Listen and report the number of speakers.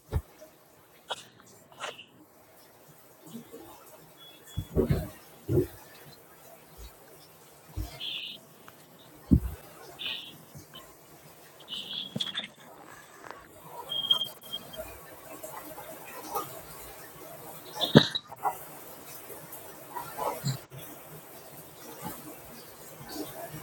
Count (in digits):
0